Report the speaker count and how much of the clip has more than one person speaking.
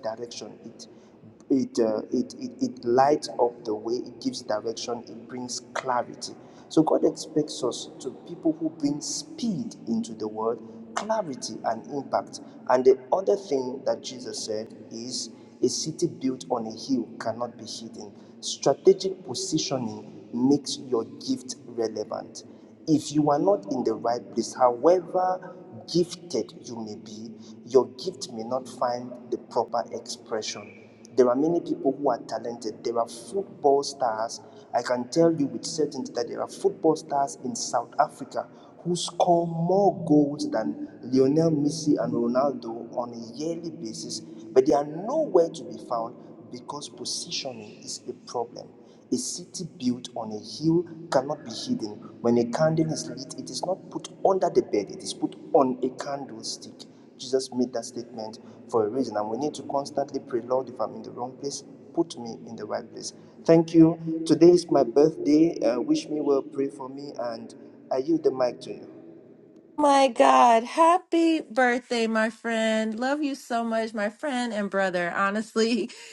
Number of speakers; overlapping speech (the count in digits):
2, no overlap